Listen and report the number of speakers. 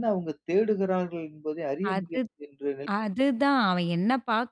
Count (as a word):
two